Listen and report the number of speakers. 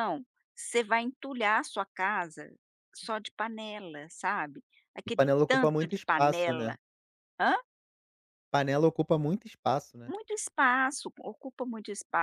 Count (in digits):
2